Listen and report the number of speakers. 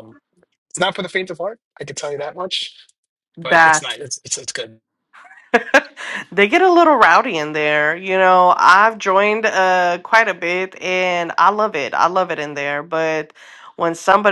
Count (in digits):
2